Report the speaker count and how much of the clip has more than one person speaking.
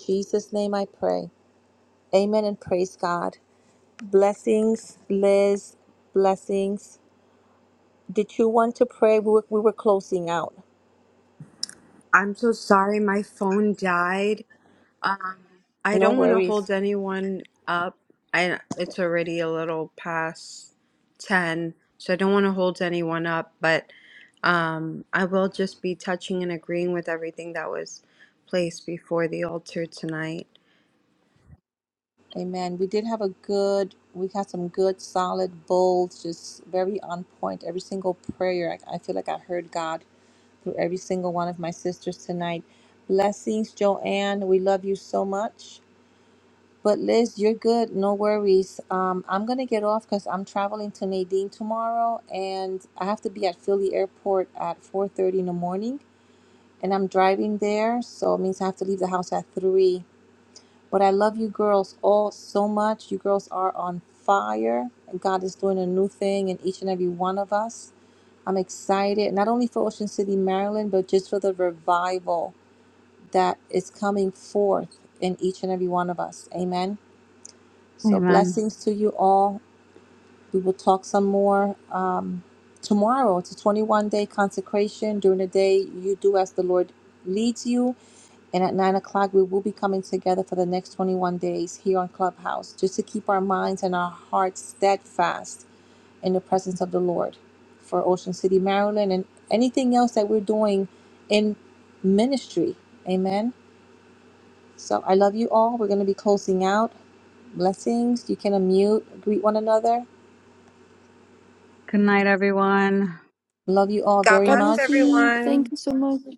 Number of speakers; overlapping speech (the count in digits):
4, about 2%